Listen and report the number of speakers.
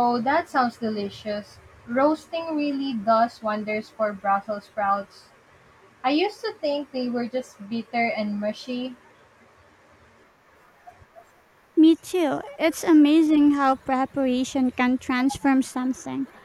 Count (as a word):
two